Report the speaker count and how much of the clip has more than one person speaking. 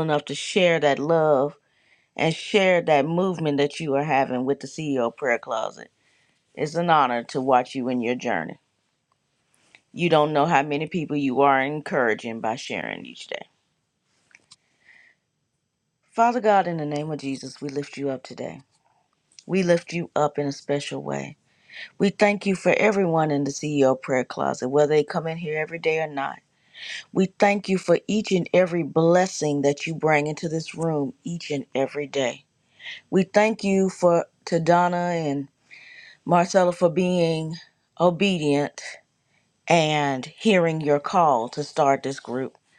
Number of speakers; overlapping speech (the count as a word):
one, no overlap